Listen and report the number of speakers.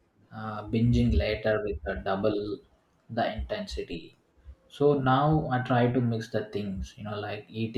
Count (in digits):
1